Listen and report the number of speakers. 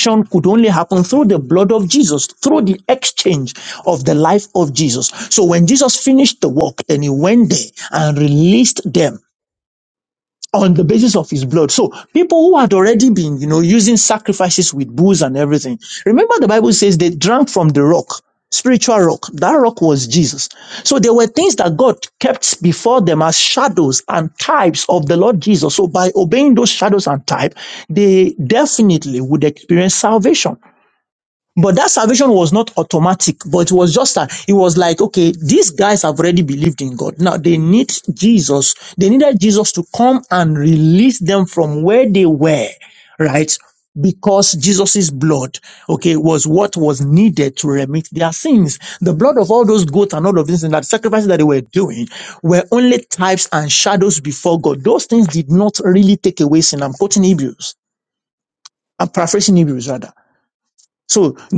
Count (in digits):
1